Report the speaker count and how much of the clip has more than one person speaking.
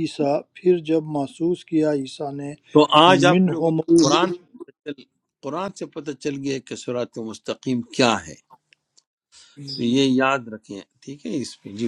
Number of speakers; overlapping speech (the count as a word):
two, about 5%